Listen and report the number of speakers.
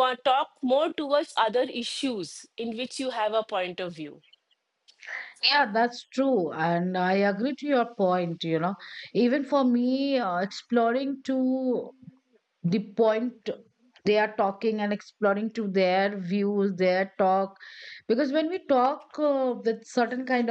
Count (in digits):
2